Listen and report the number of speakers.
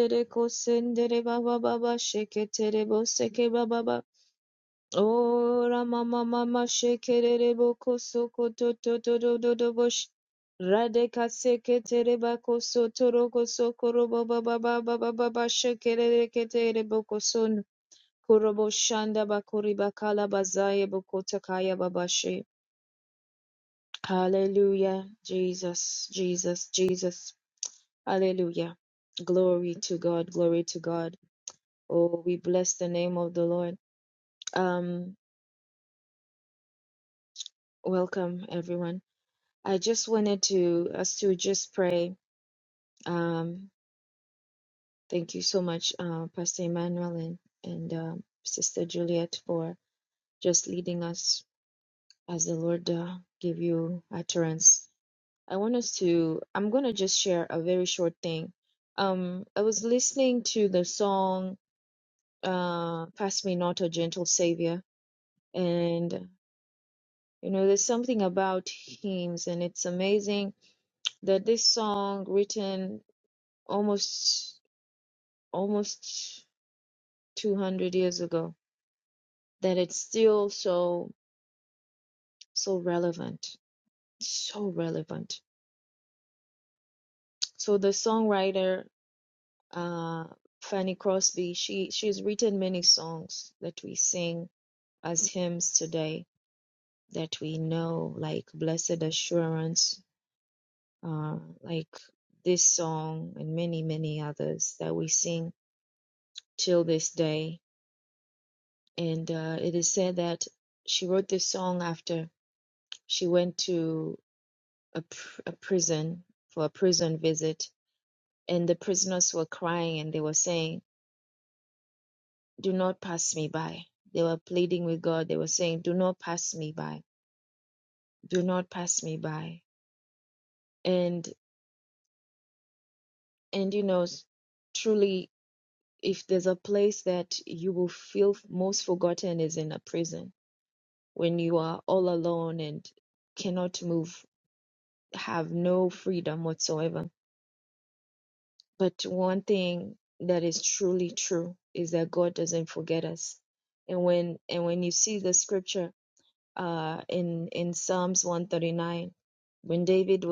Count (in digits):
1